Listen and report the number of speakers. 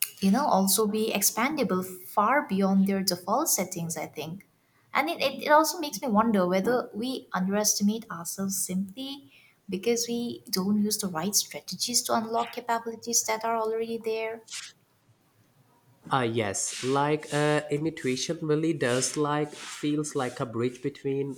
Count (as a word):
two